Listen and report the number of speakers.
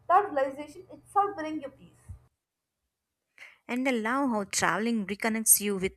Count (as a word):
two